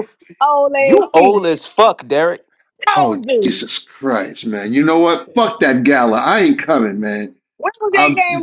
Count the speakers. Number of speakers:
3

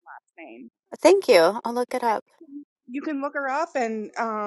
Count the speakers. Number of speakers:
2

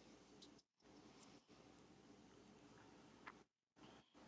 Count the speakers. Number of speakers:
0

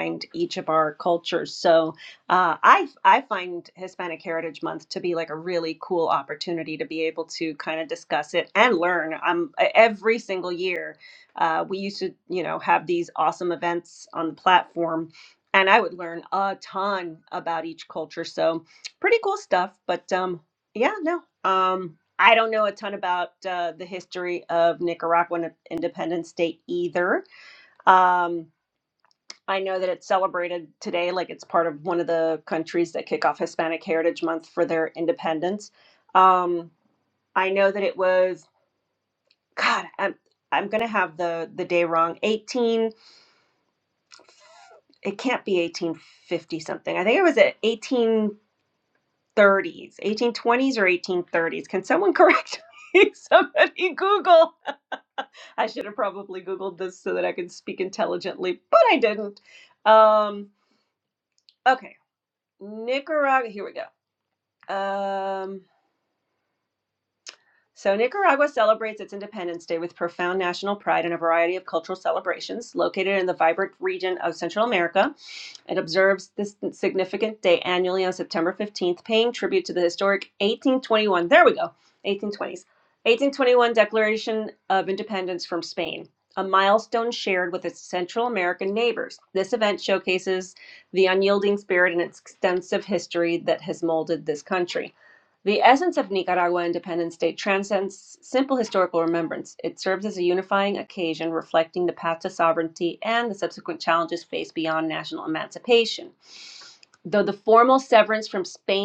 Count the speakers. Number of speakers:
1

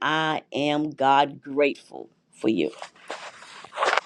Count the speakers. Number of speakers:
1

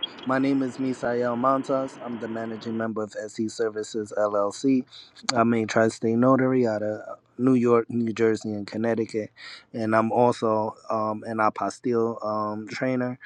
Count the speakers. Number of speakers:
1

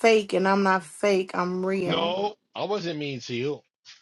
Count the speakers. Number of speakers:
2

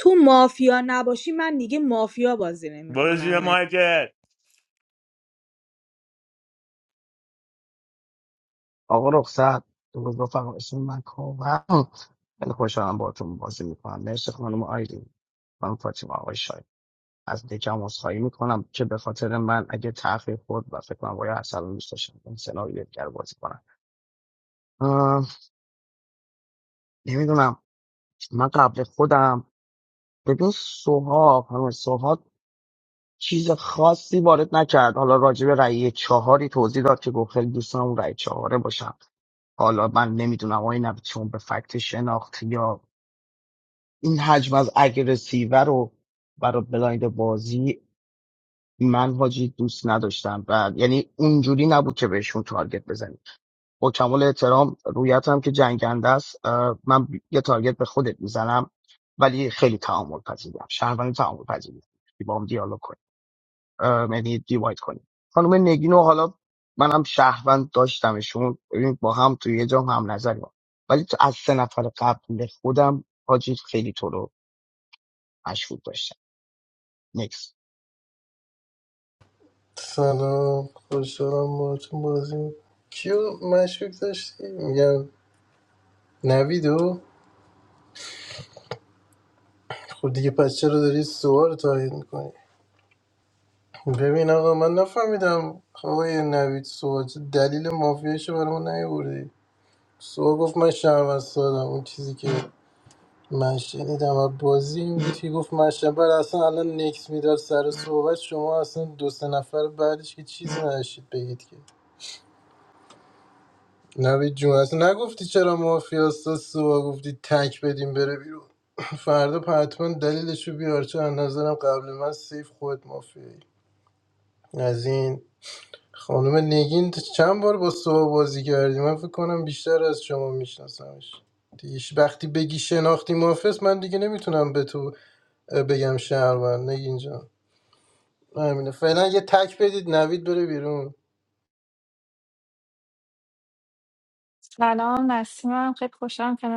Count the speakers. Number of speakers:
5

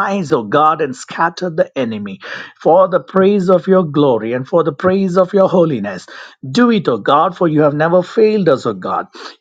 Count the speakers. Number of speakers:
1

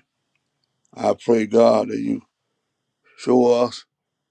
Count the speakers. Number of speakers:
1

